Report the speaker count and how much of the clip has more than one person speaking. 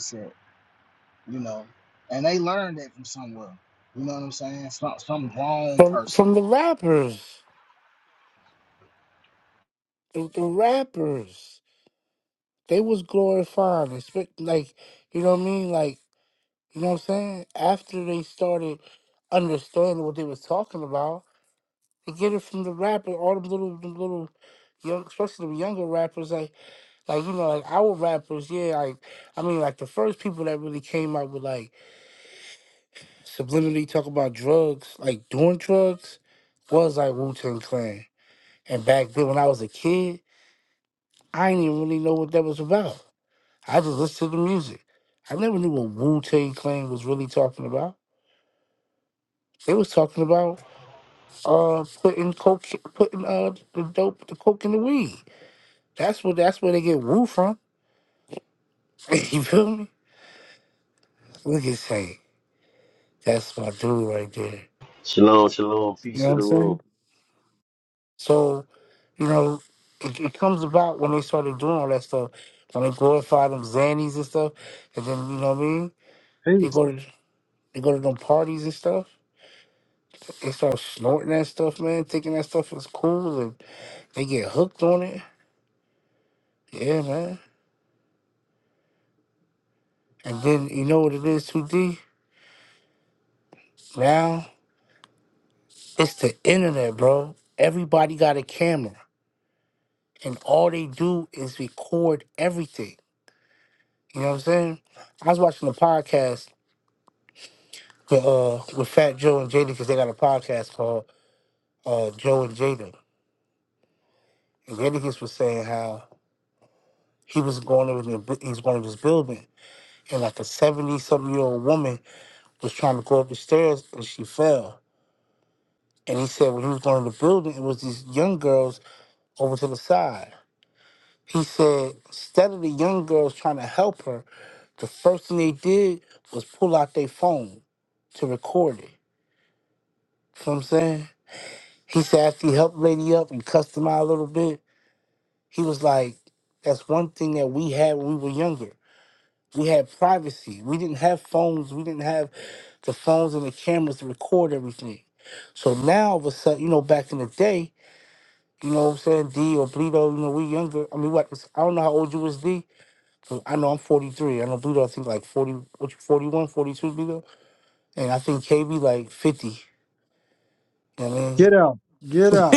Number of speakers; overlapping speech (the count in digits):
4, about 1%